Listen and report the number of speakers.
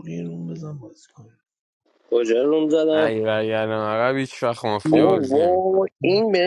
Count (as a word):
three